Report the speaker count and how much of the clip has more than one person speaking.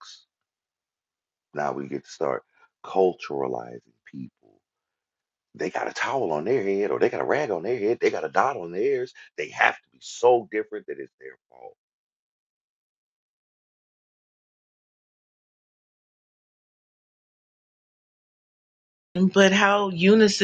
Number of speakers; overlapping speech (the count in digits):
2, no overlap